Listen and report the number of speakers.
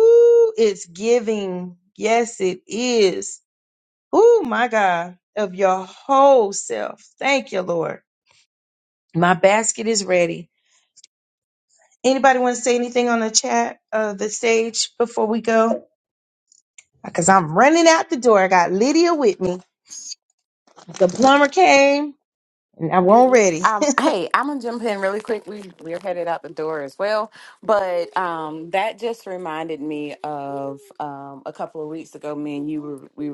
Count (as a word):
two